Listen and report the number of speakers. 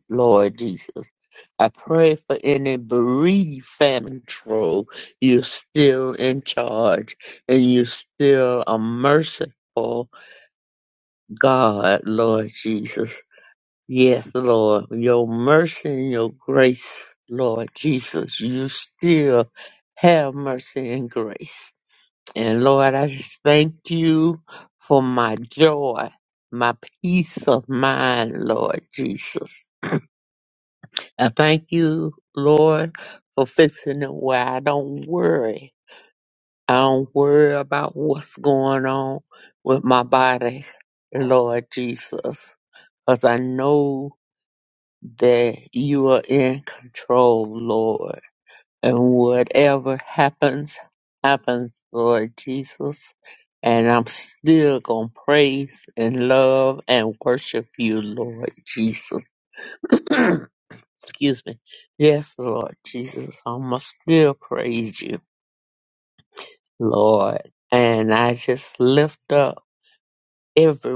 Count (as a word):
one